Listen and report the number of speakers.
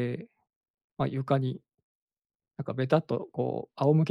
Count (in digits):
1